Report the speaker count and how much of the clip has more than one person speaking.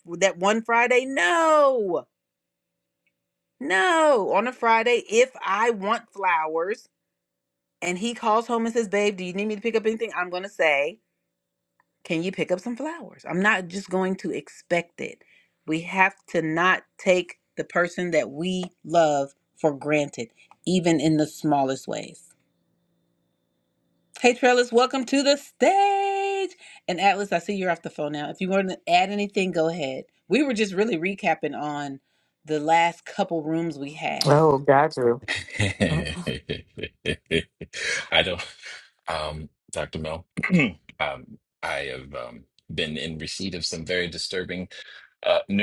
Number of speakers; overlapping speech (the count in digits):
3, under 1%